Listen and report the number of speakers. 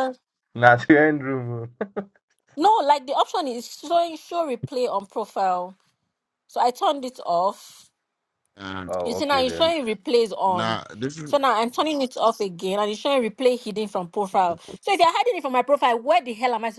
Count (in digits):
3